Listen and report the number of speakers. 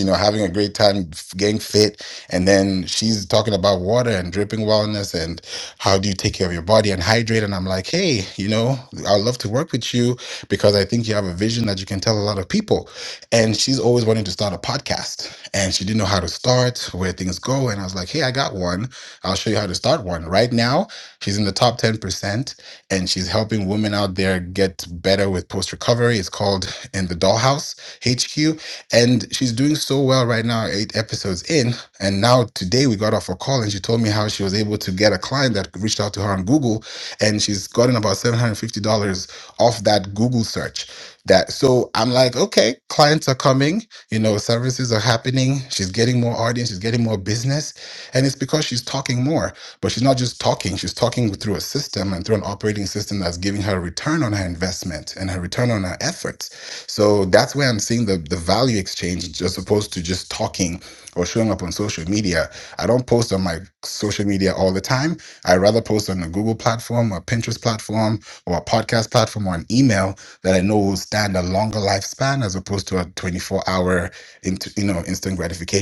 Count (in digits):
1